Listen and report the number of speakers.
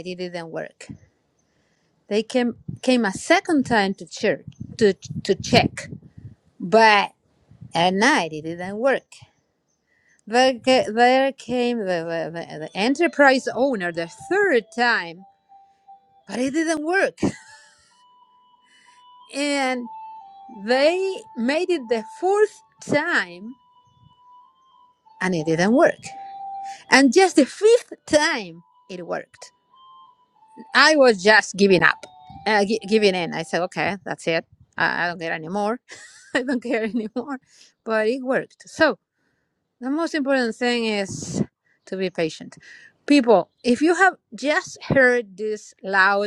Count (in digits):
1